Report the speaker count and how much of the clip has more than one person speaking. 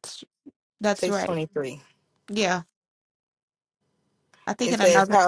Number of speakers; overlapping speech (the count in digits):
2, about 17%